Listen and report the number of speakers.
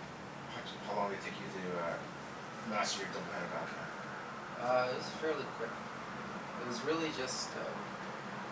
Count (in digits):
2